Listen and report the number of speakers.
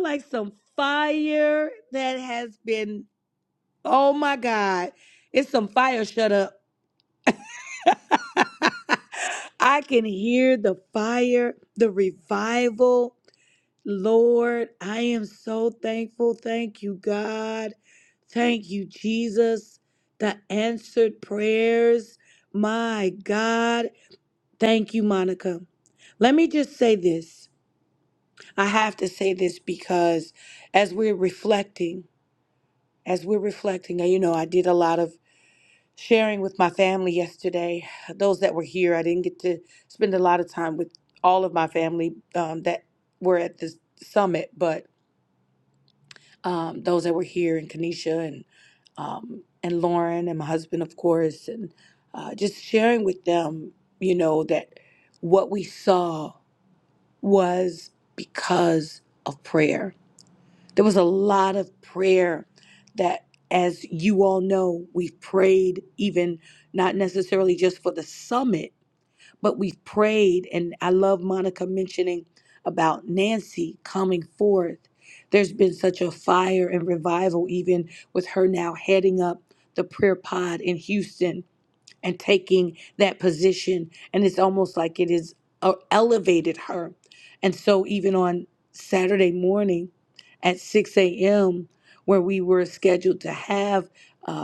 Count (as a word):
one